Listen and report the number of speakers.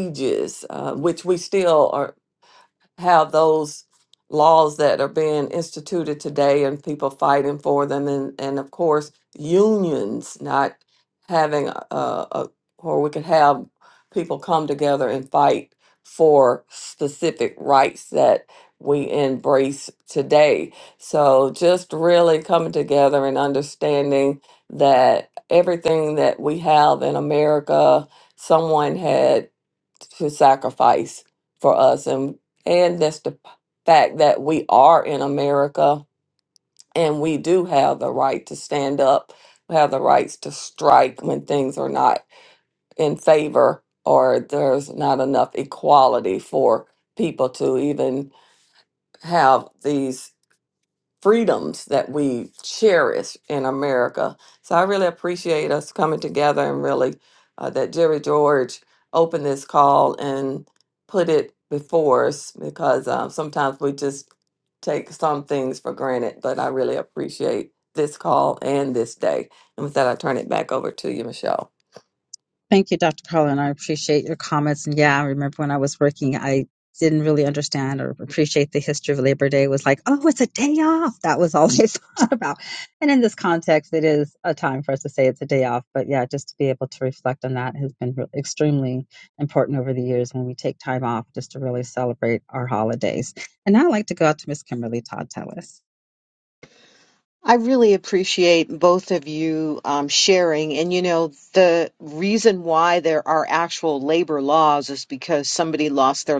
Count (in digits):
3